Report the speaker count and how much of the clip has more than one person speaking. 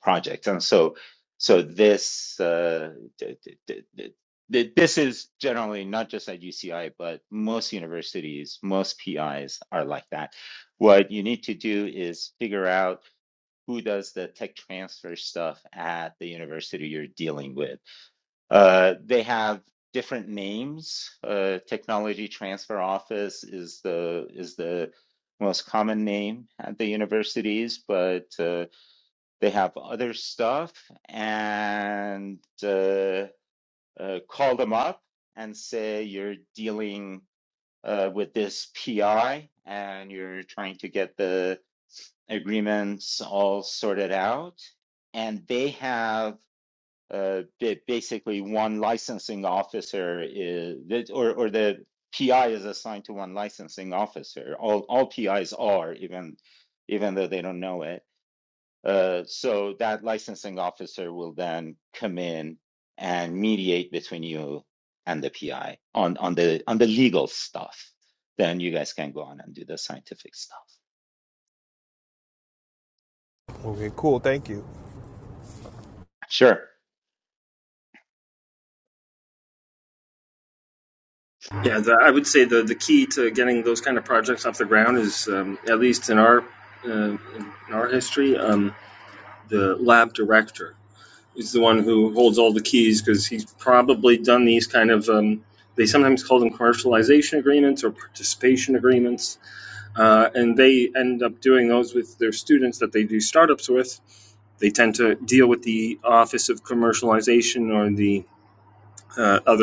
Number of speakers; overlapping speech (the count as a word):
three, no overlap